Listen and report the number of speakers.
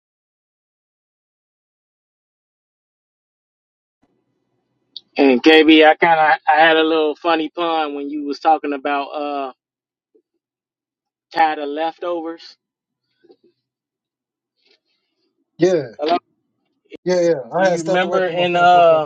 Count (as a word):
two